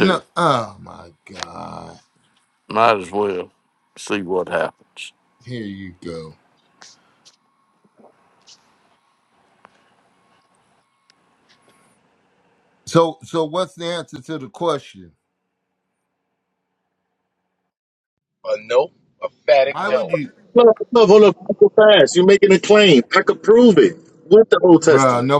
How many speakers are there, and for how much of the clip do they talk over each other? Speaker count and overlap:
4, about 4%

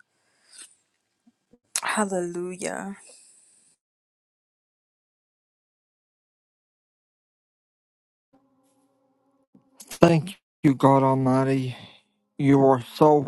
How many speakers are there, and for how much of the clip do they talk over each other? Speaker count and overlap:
2, no overlap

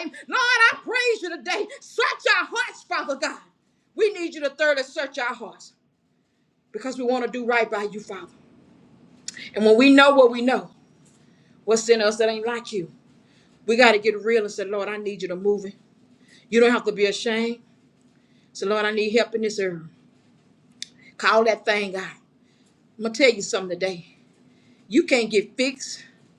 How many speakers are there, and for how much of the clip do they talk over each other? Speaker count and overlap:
1, no overlap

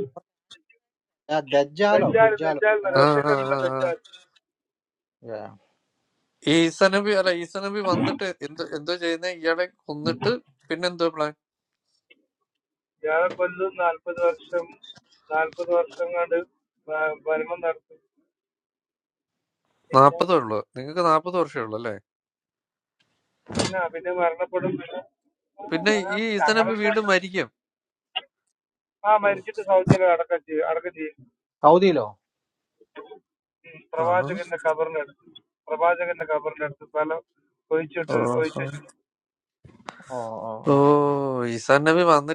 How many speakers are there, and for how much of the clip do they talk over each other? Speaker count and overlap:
3, about 11%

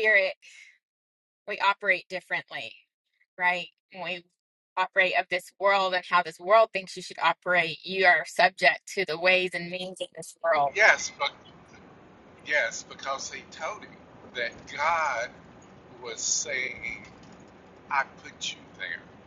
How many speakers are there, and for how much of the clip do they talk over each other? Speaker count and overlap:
2, under 1%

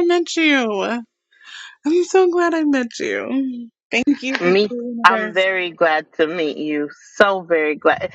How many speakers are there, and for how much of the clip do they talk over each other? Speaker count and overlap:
2, about 6%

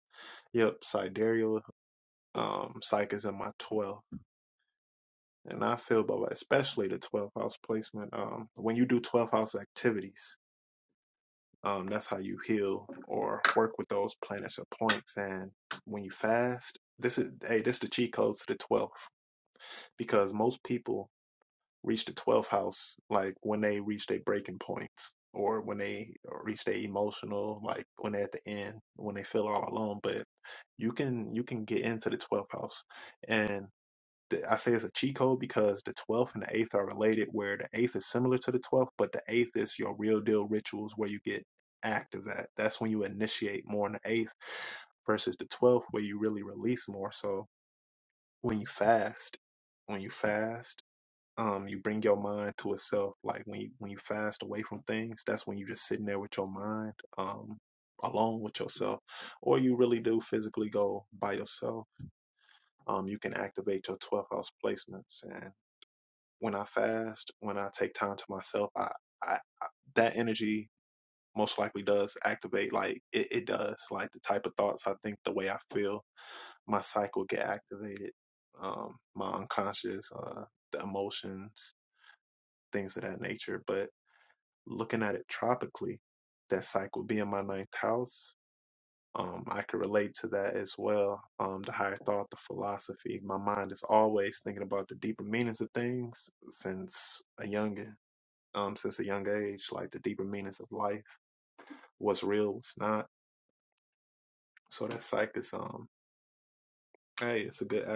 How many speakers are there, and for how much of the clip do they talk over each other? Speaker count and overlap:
1, no overlap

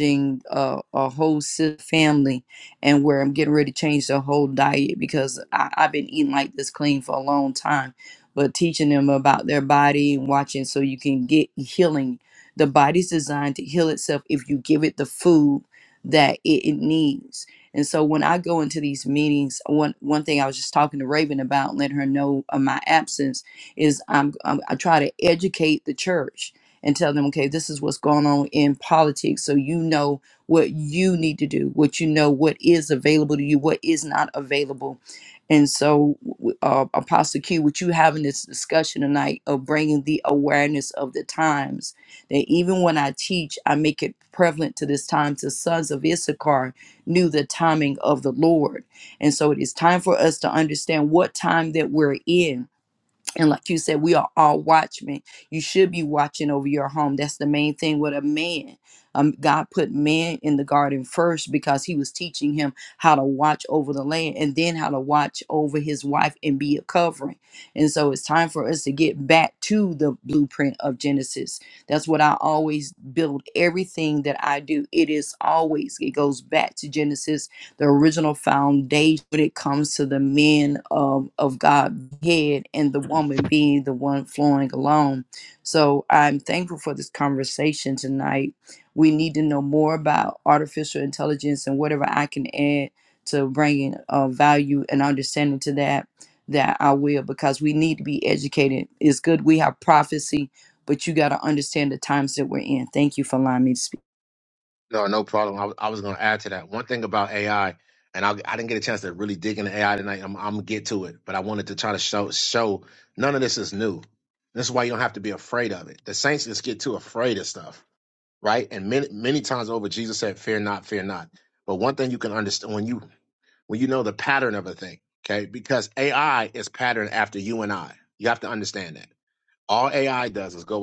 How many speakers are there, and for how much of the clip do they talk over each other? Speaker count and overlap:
2, no overlap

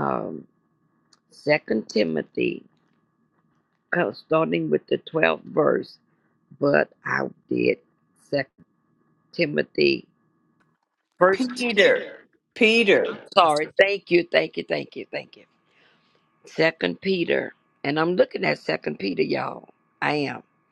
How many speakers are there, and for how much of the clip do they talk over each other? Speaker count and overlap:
2, about 1%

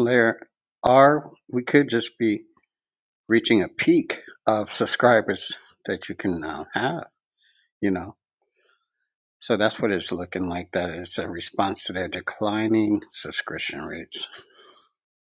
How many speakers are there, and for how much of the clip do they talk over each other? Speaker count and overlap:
1, no overlap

